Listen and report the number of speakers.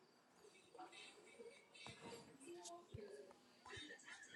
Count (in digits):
0